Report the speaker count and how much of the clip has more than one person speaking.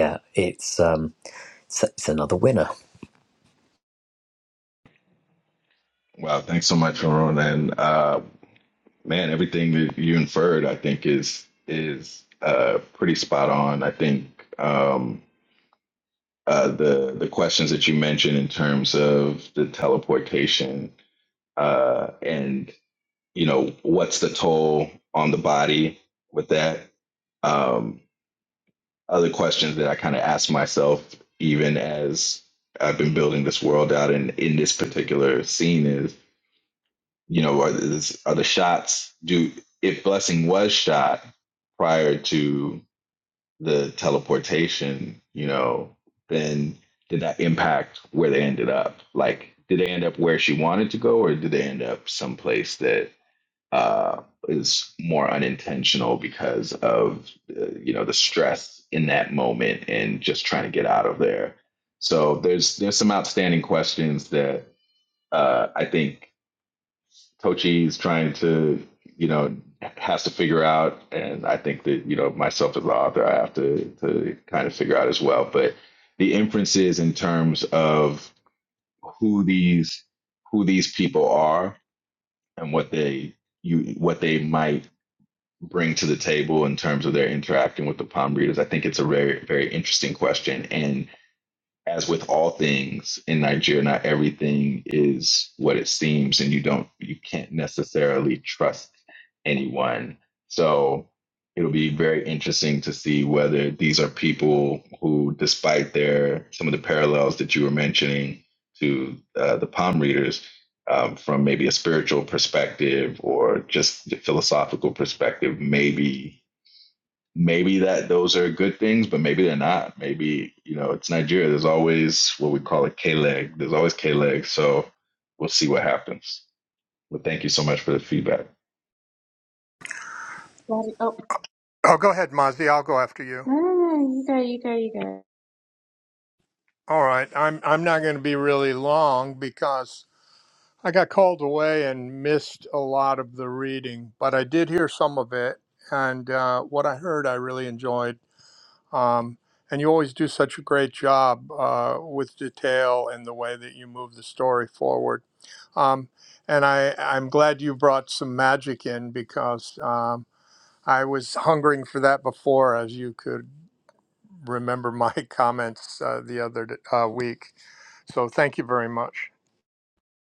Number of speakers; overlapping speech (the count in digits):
4, no overlap